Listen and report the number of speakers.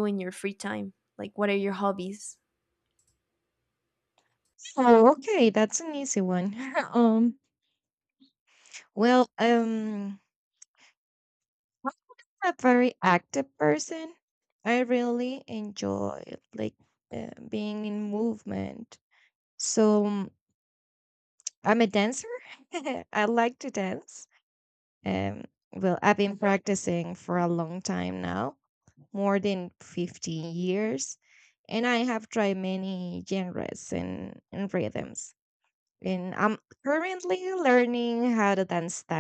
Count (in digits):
2